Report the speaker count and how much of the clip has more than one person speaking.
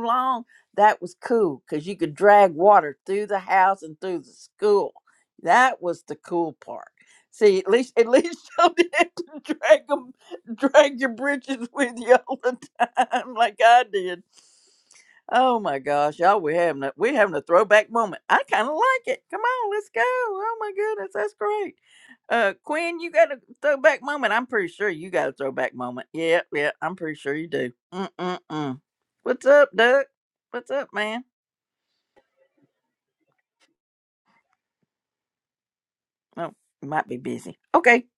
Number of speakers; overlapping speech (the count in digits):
1, no overlap